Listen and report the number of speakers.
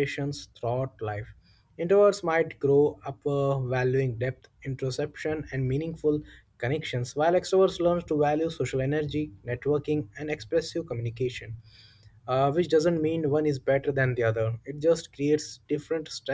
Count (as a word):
one